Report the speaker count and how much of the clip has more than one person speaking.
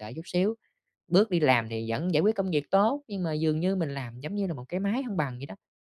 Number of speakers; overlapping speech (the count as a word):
one, no overlap